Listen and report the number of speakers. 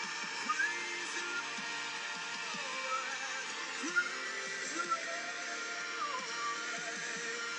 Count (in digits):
0